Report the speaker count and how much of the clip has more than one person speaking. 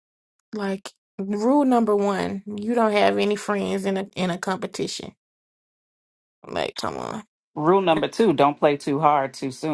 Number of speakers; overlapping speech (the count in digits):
2, no overlap